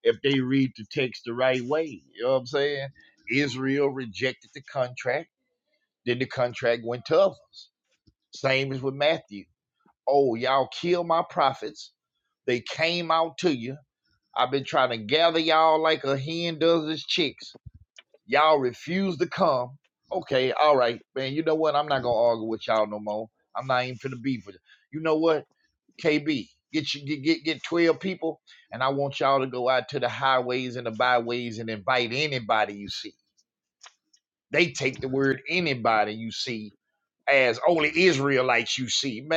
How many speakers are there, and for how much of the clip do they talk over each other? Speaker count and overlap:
1, no overlap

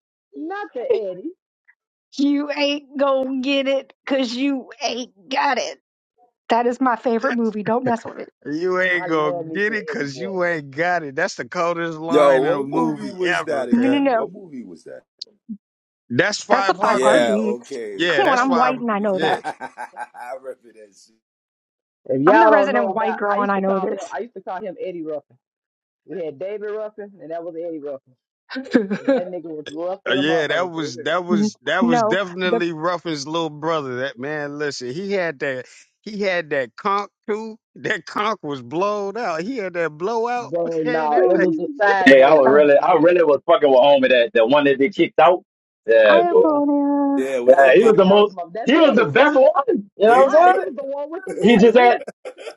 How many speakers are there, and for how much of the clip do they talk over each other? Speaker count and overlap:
5, about 29%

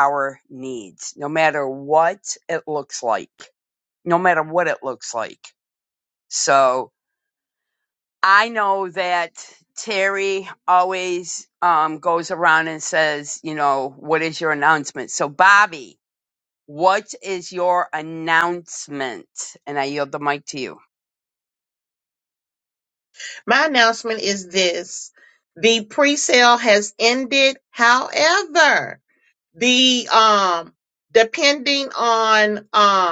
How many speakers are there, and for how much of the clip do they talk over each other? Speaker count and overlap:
2, no overlap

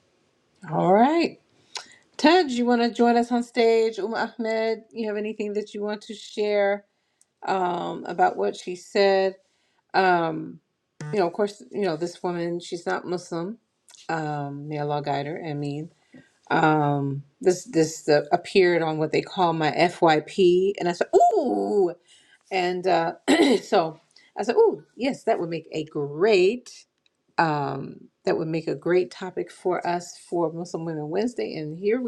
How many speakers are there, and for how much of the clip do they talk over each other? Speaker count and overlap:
1, no overlap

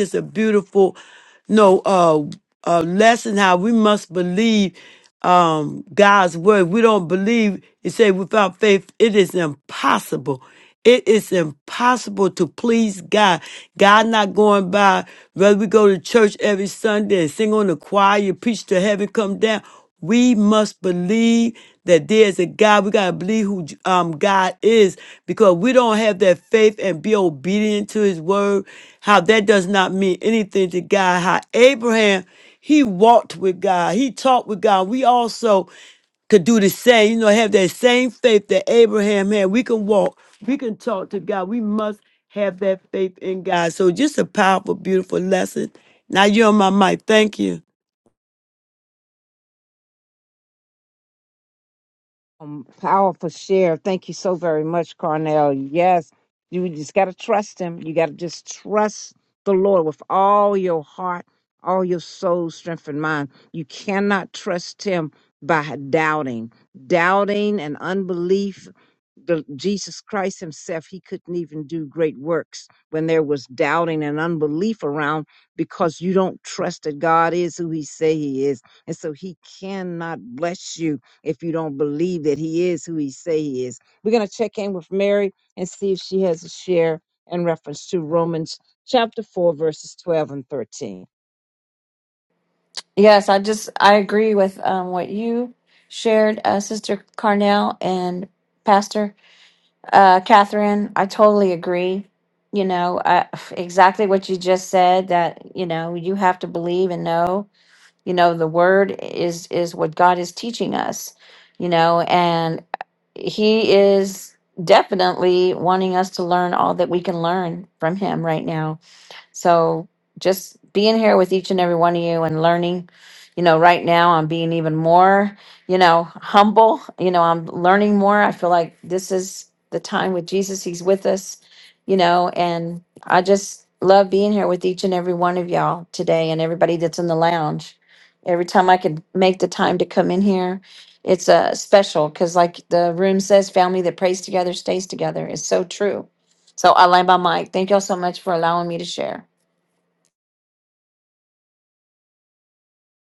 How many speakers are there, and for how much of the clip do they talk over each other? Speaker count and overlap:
3, no overlap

